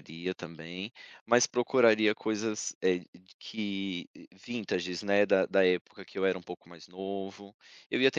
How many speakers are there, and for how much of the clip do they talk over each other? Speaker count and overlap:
one, no overlap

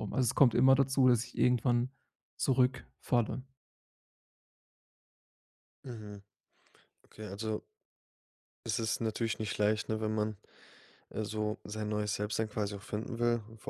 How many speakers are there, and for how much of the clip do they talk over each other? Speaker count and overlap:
two, no overlap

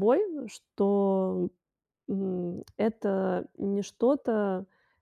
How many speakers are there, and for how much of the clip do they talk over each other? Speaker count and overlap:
one, no overlap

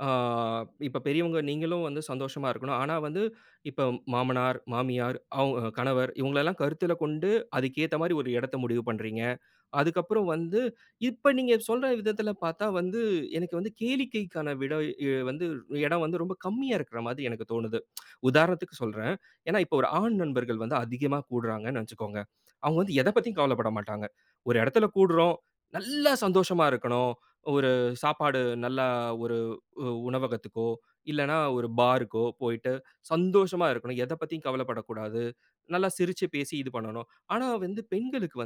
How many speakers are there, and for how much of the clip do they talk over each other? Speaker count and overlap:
one, no overlap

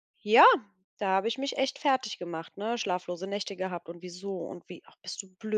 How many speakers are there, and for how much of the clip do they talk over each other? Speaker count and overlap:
one, no overlap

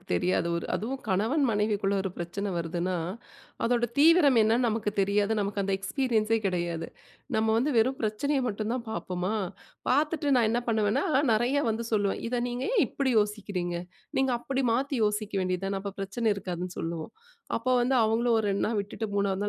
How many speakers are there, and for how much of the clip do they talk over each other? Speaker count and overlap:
one, no overlap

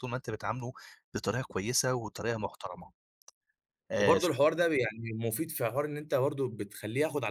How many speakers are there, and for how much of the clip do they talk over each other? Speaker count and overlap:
two, about 4%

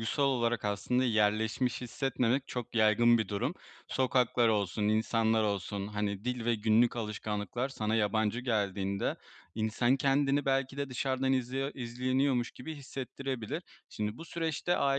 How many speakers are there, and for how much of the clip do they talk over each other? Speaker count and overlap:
one, no overlap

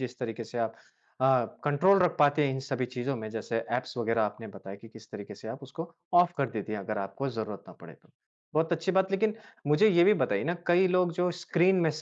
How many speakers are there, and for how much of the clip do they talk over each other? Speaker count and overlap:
one, no overlap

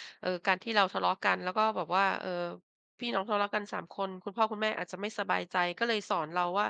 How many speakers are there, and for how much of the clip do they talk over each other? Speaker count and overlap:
one, no overlap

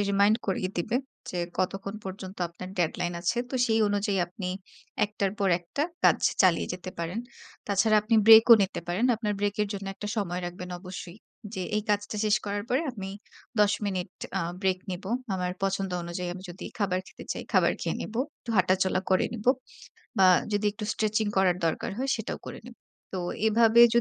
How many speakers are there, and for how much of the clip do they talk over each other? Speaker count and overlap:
one, no overlap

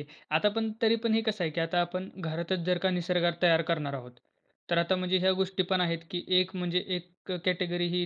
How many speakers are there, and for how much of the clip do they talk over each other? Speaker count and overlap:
one, no overlap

